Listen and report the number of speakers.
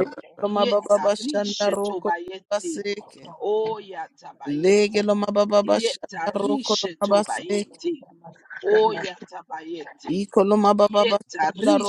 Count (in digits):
2